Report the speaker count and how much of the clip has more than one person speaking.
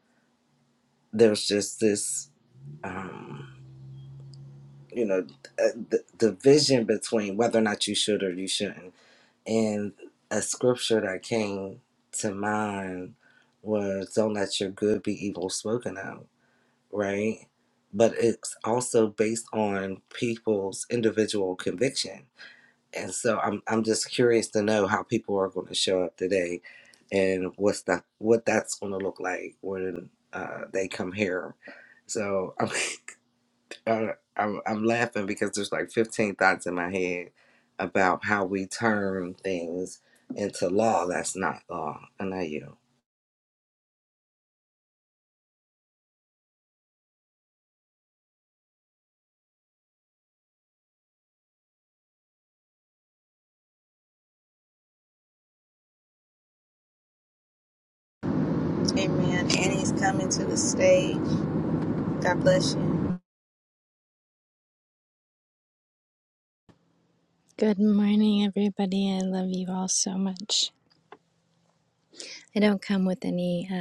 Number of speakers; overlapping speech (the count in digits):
3, no overlap